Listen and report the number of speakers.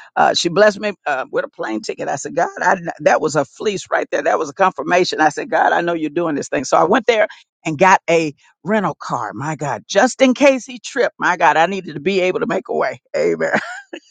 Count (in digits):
1